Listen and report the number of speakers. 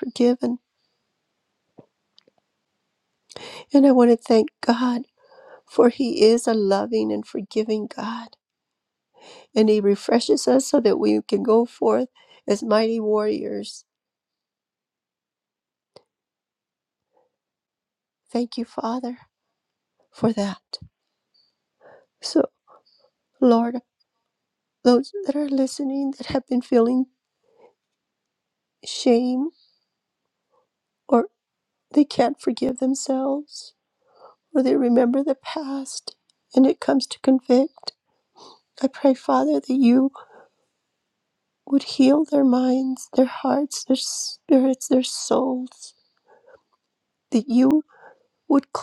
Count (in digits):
1